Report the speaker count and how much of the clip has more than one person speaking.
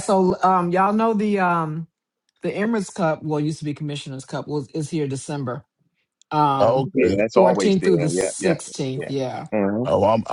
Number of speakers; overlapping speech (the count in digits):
3, about 16%